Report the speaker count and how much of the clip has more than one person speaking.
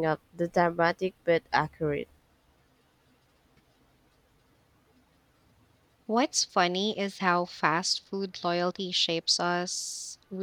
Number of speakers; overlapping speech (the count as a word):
two, no overlap